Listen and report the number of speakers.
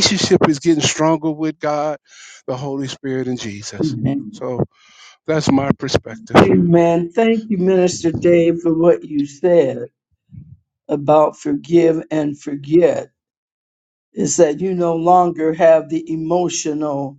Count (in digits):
2